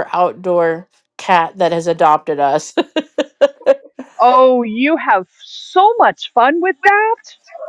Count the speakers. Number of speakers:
2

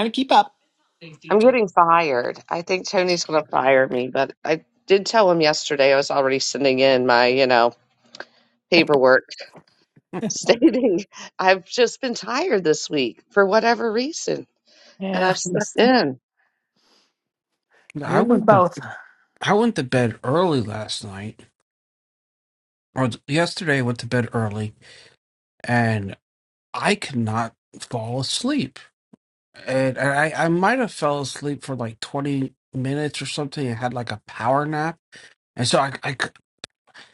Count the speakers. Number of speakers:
3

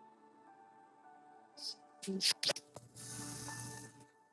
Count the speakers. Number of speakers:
0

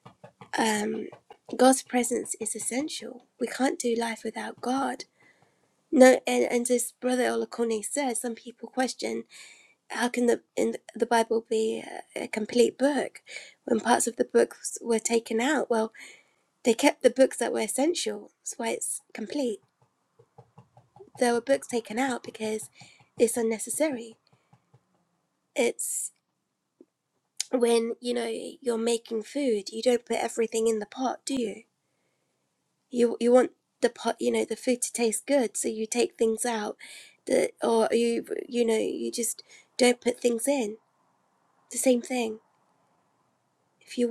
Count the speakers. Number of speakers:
1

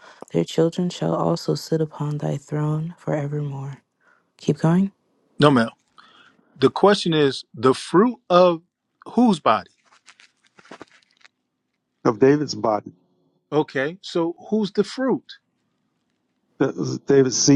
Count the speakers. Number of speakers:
3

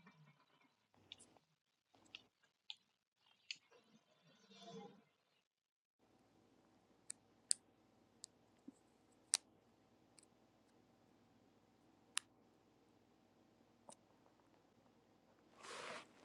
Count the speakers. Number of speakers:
0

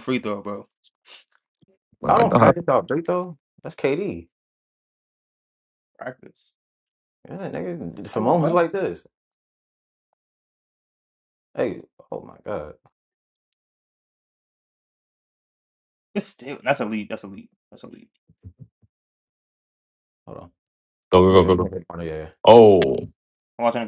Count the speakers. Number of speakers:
3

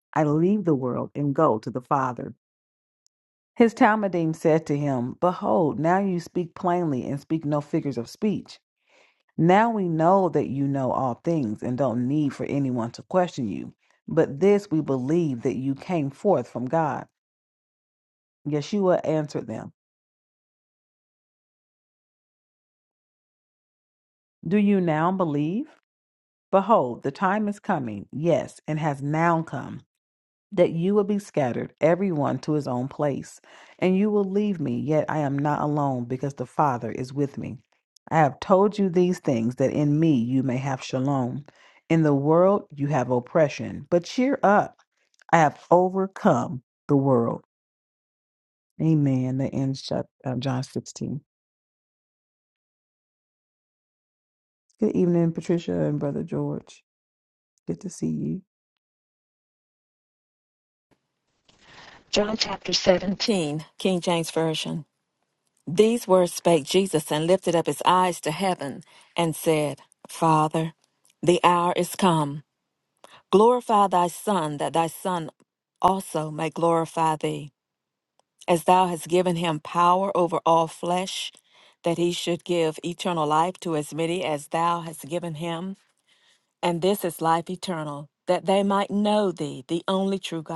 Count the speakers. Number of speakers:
2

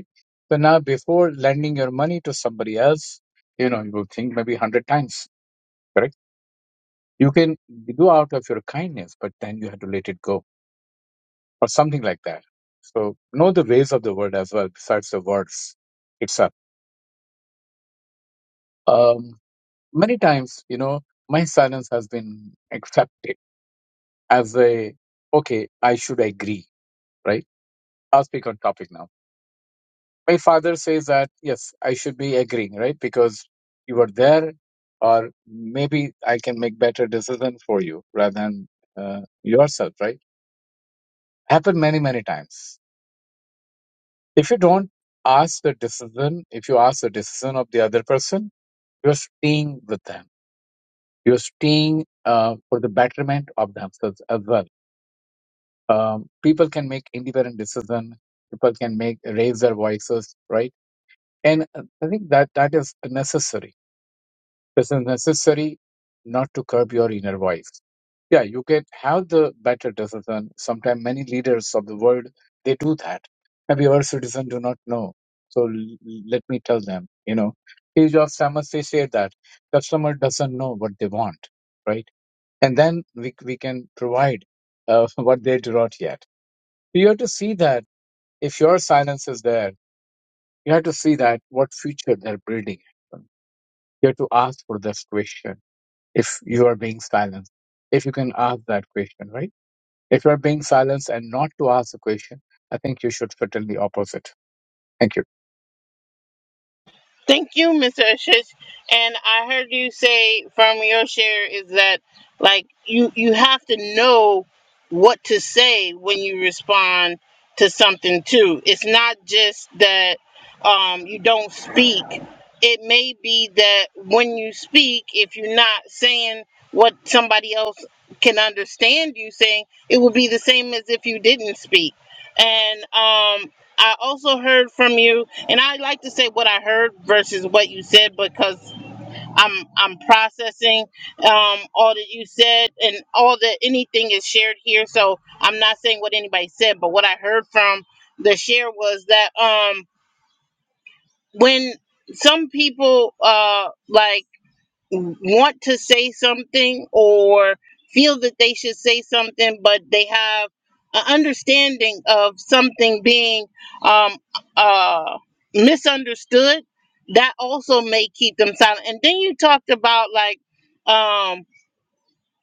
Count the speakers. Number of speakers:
2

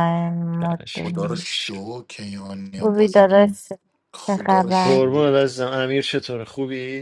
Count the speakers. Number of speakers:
3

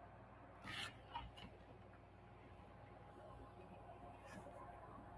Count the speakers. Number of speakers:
0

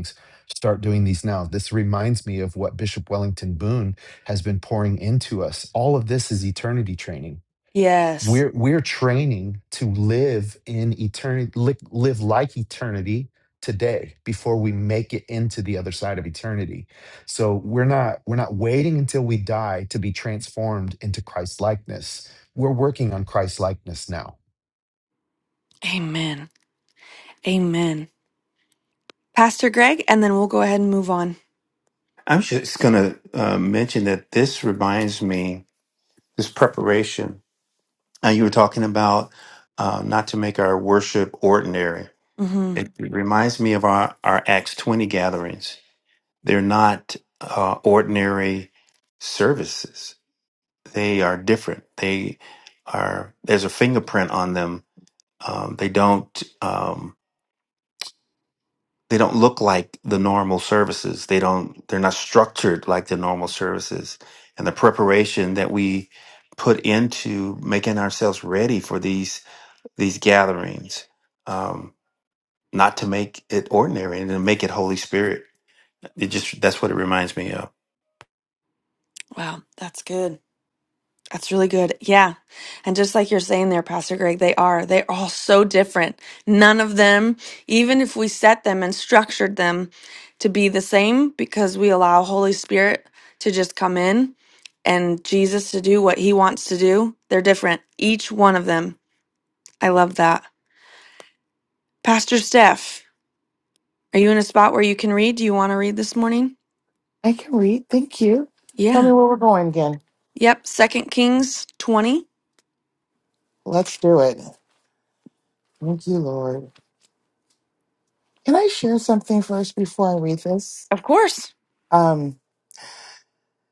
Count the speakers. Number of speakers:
4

